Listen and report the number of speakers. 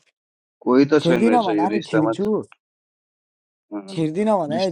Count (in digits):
2